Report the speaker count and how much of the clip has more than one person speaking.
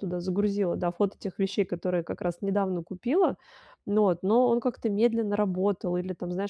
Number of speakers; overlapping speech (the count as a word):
one, no overlap